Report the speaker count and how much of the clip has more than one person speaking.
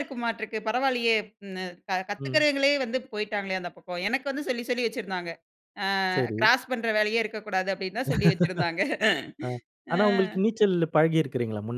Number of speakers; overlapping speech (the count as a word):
two, about 6%